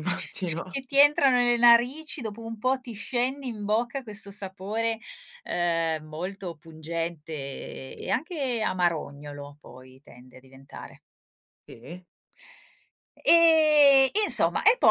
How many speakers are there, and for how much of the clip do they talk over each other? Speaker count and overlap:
two, about 1%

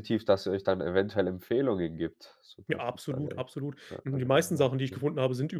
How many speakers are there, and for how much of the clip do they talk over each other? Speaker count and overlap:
two, about 29%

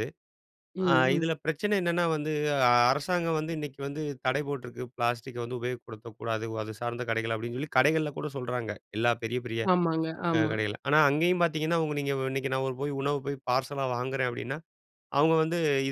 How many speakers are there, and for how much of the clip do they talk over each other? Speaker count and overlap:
two, about 4%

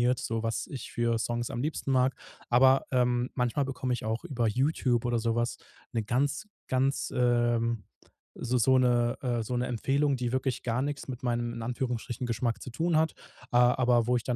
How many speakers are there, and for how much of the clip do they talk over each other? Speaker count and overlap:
one, no overlap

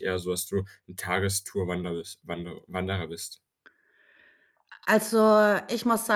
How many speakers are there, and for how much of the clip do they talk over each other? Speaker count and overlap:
two, no overlap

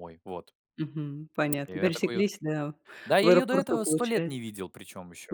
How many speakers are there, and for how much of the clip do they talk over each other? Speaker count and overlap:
two, about 34%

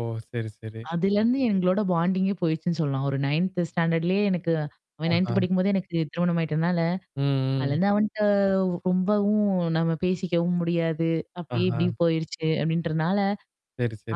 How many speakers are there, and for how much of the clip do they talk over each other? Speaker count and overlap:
two, about 6%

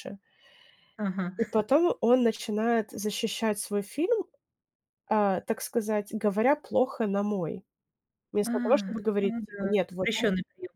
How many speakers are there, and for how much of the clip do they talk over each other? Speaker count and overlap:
two, about 11%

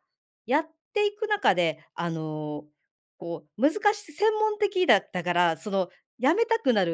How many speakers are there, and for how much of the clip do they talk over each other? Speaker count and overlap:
one, no overlap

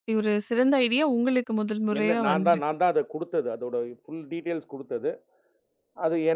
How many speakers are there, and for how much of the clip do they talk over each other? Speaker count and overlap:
two, about 13%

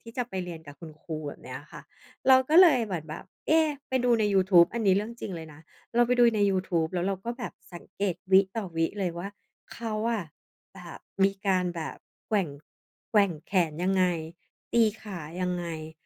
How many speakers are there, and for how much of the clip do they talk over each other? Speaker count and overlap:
one, no overlap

